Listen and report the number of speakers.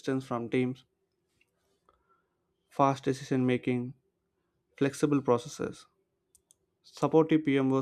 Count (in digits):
1